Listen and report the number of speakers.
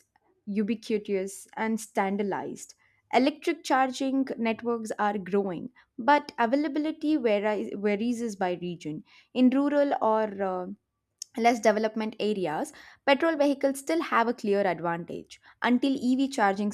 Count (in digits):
1